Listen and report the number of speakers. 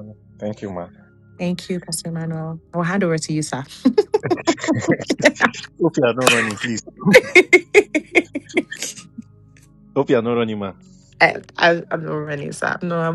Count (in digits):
2